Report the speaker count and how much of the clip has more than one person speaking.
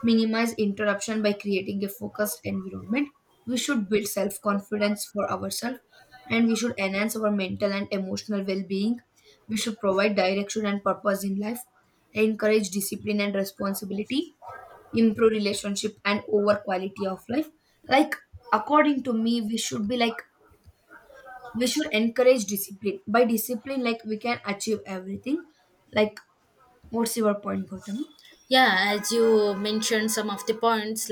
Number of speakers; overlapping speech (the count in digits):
2, no overlap